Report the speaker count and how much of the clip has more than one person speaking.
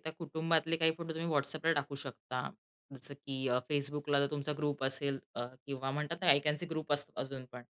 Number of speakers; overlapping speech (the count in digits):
1, no overlap